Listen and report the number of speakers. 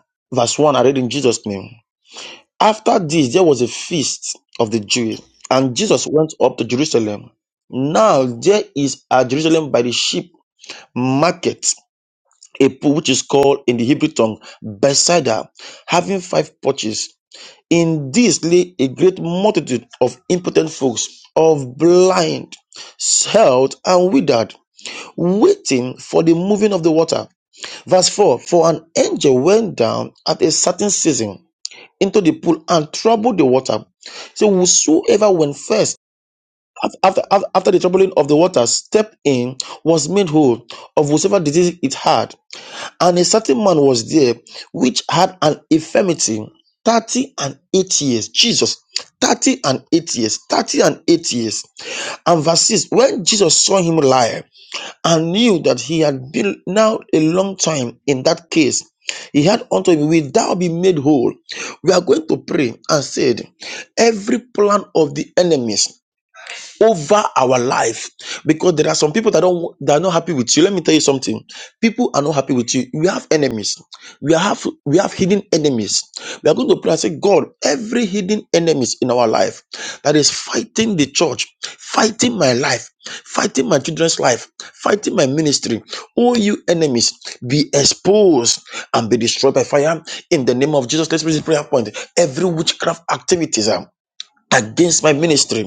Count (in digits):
1